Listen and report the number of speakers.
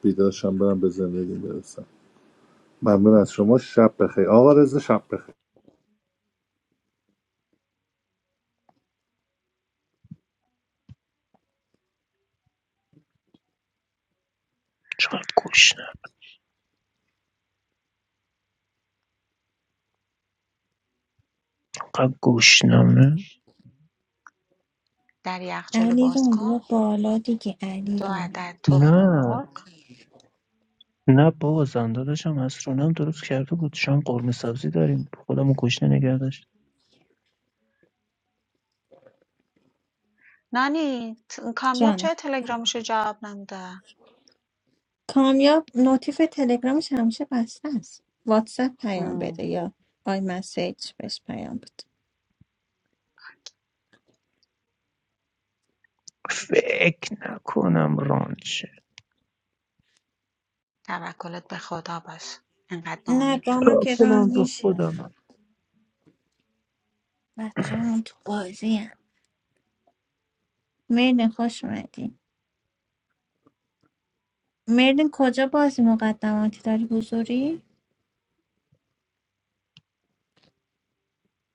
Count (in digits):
4